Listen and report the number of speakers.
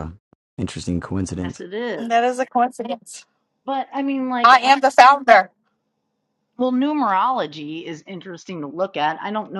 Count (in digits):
3